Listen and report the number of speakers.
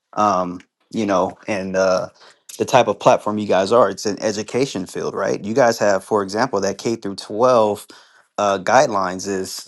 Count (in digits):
1